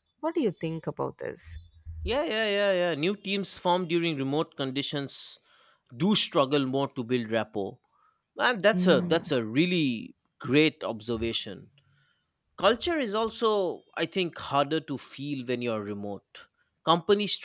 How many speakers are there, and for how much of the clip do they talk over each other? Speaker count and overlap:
2, about 3%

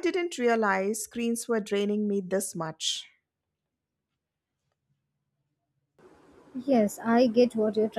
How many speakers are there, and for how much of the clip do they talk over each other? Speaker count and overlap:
2, no overlap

